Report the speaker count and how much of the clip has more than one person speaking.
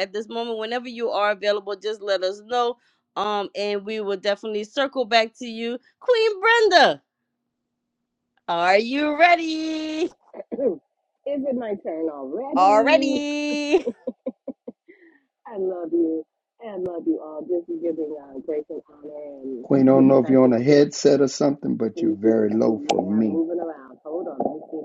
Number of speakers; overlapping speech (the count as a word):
three, about 11%